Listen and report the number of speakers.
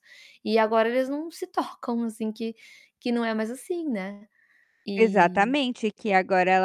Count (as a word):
two